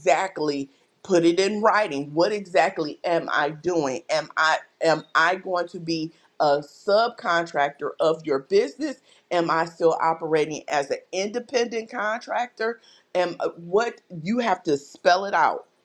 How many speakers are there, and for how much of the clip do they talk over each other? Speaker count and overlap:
one, no overlap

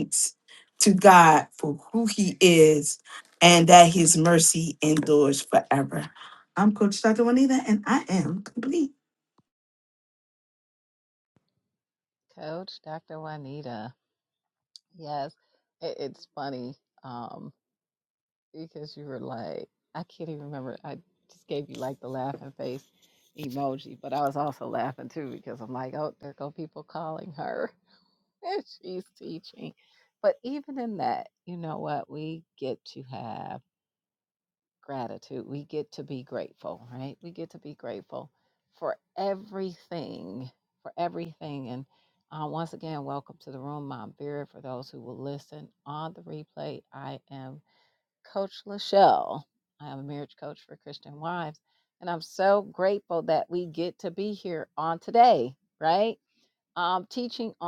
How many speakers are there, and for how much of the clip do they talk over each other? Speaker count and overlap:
two, no overlap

